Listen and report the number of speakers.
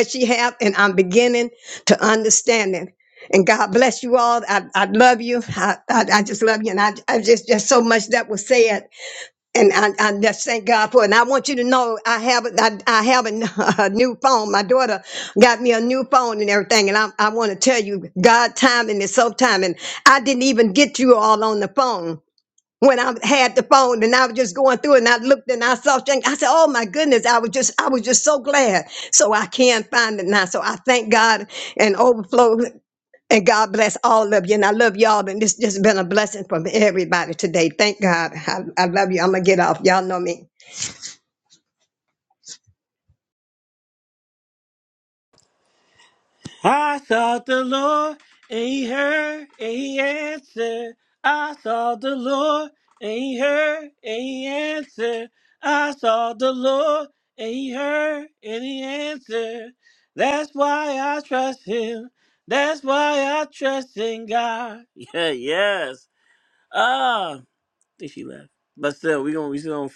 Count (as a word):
two